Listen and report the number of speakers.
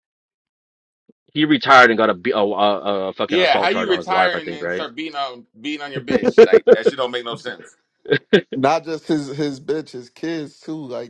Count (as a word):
three